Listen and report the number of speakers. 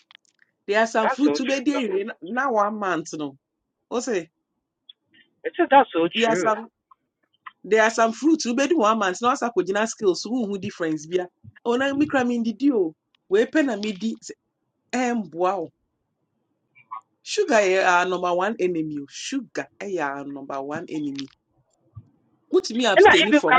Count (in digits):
2